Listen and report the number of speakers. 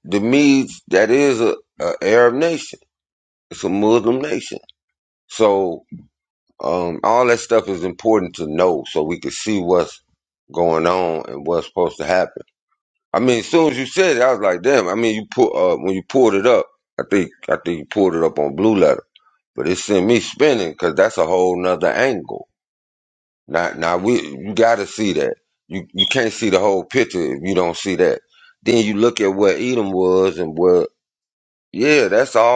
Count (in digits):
1